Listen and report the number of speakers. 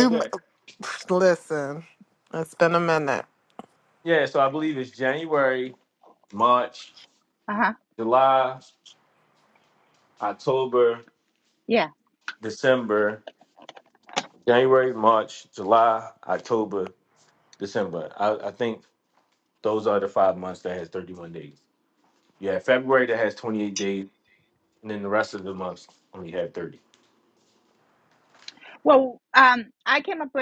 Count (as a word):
three